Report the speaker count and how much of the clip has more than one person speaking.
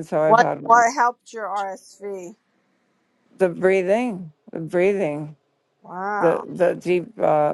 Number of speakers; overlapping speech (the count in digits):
2, about 10%